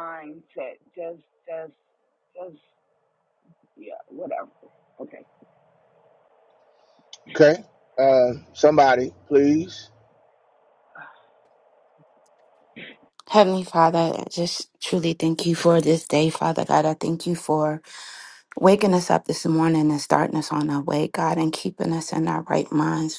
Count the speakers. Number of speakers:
three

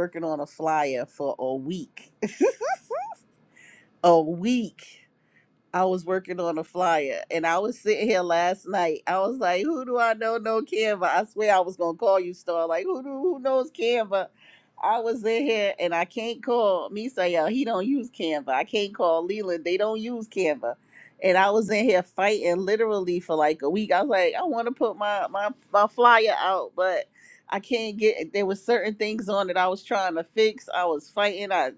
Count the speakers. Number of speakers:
one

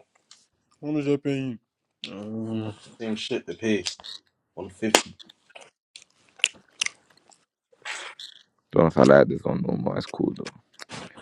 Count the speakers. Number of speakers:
three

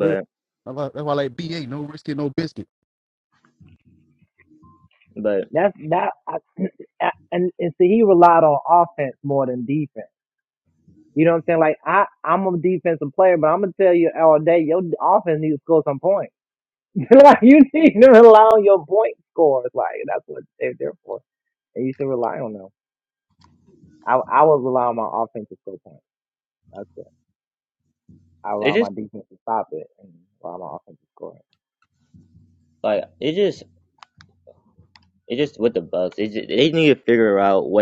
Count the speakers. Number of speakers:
three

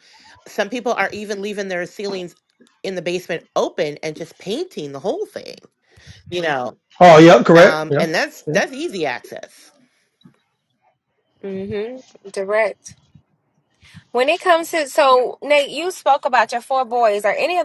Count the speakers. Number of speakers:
three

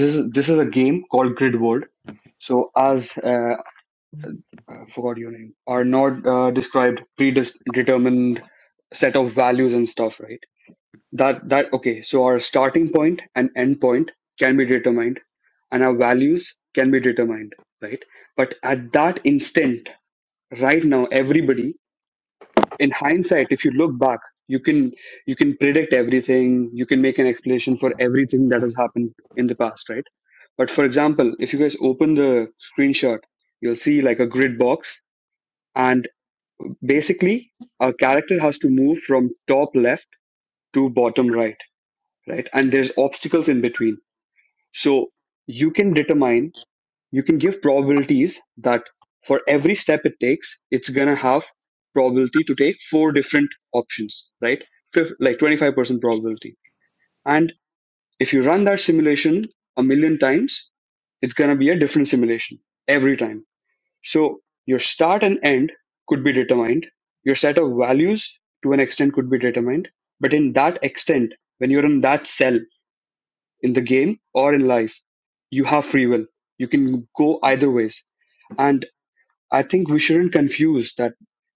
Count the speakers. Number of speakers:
one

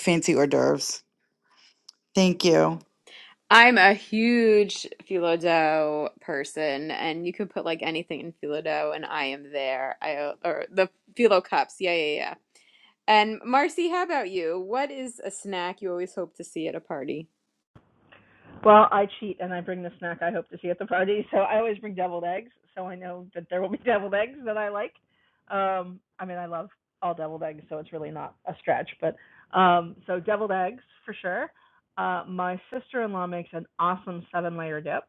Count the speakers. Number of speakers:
three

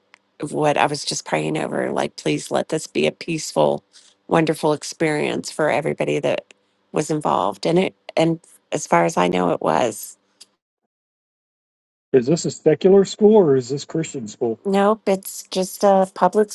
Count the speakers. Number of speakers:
two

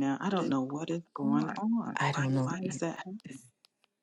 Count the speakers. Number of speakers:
two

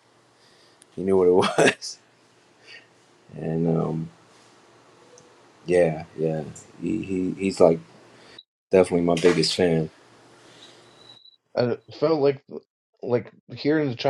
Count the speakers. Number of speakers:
two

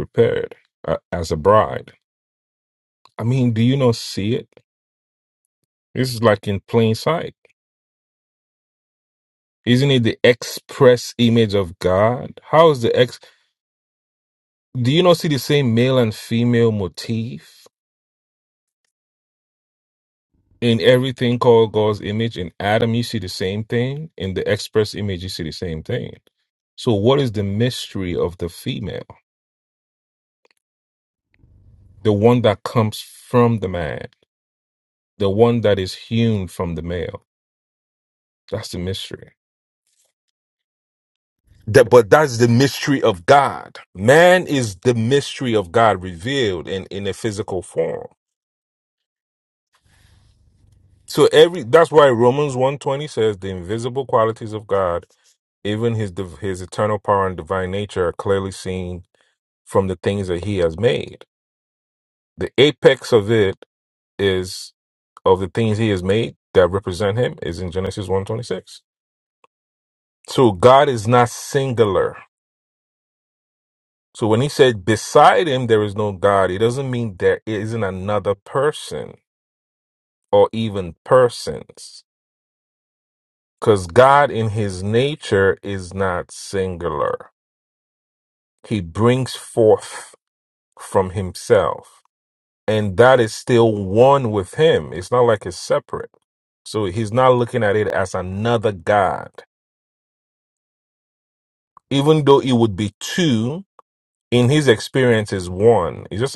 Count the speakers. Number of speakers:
one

